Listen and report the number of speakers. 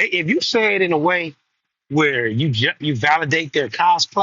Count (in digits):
1